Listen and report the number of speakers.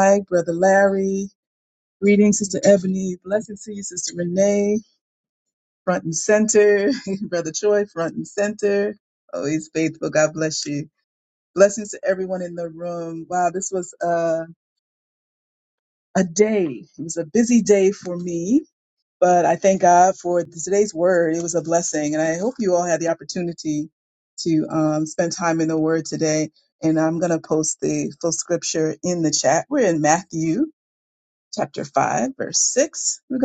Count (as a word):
one